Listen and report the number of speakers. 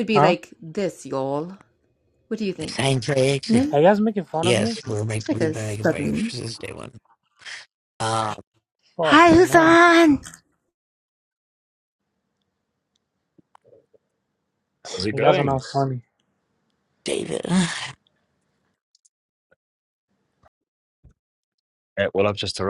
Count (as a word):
four